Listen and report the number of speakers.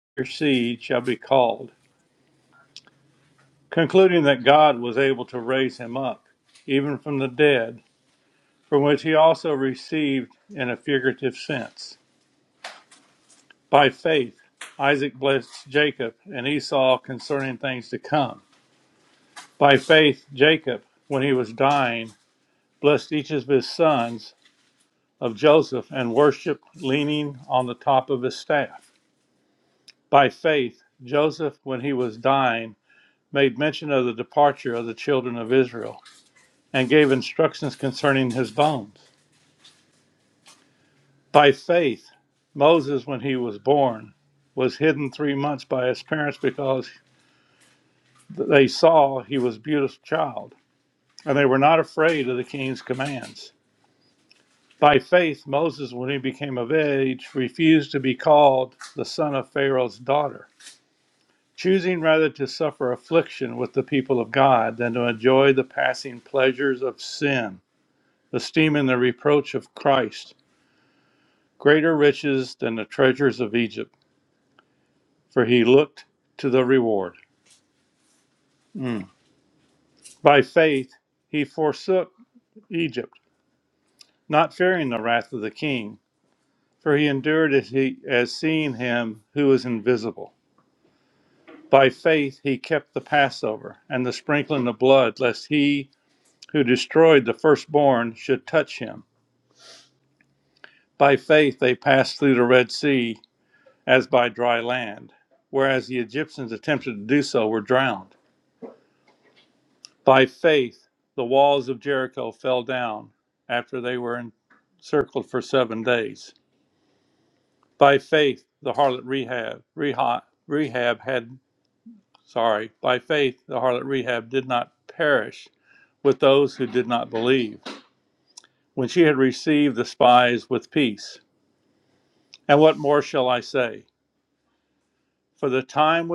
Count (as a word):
one